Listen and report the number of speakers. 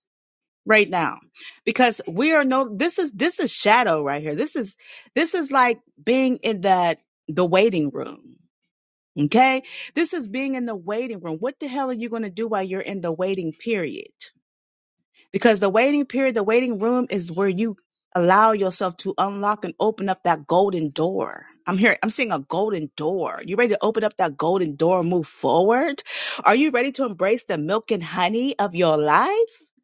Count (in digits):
1